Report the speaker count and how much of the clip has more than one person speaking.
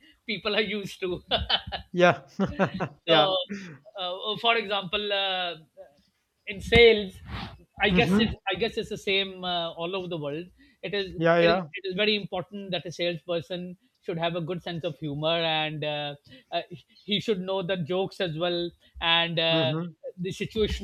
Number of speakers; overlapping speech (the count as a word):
two, about 7%